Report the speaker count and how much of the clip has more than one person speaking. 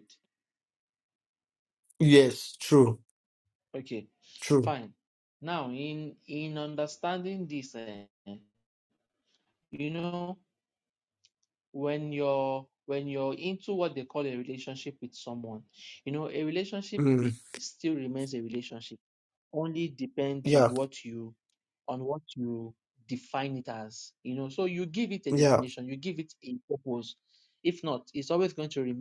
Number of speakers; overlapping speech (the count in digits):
2, about 3%